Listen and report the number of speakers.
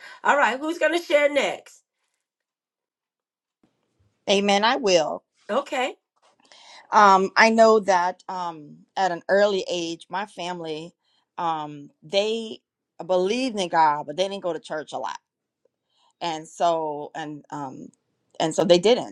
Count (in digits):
2